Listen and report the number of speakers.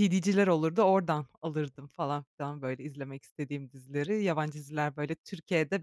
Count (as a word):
one